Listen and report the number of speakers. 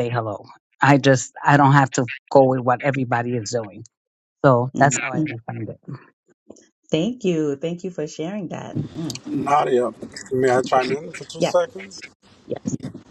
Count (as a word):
three